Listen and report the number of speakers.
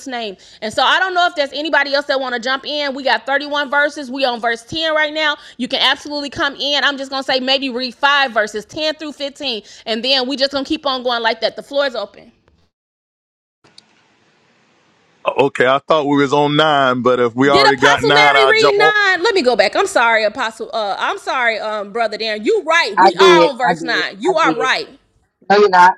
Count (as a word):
three